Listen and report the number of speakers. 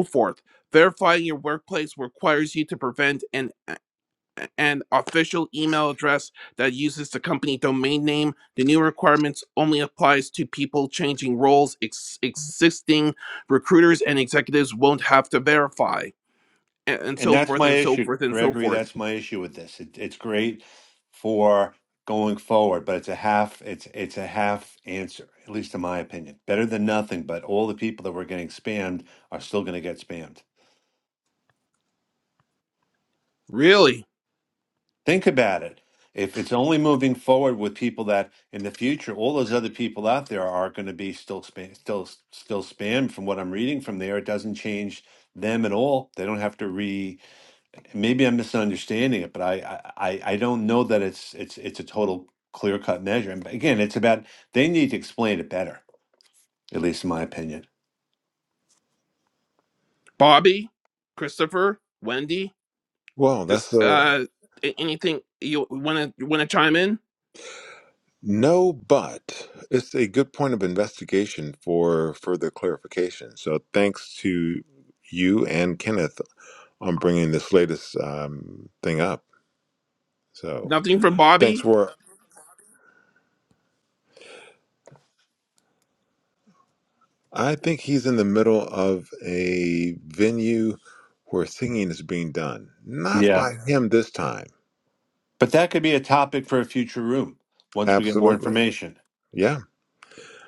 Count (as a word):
three